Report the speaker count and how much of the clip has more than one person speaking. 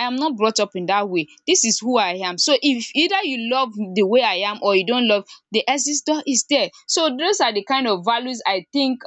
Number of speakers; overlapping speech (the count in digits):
1, no overlap